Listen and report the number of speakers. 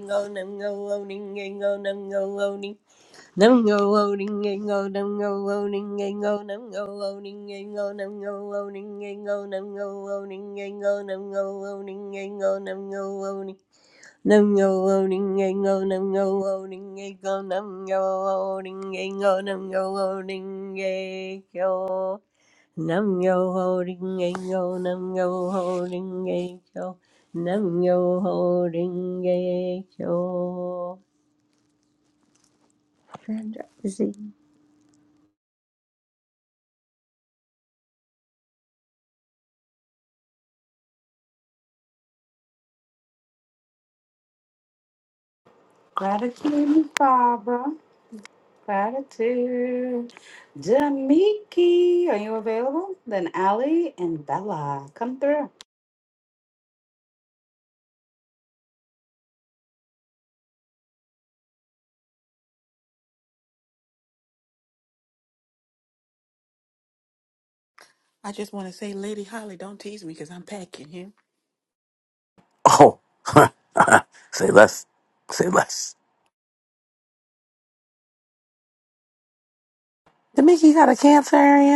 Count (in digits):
4